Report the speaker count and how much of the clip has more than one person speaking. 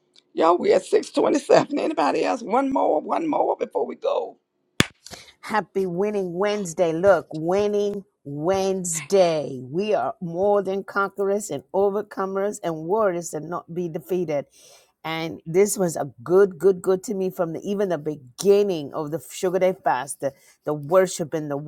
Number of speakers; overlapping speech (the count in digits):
2, no overlap